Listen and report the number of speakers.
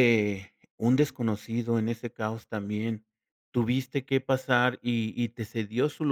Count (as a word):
one